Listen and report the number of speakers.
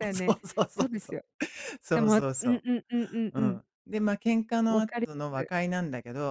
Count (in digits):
2